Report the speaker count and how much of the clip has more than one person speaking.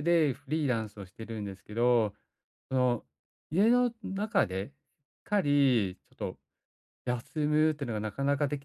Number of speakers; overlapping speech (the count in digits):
1, no overlap